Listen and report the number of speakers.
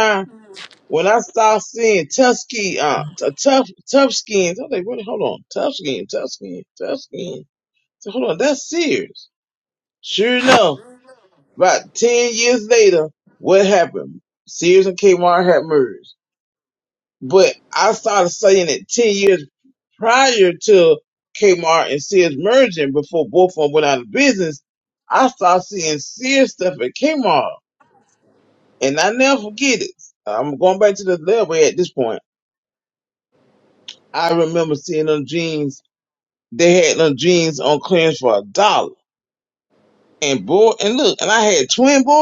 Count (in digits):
1